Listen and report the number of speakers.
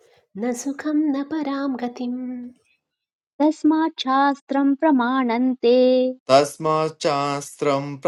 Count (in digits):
3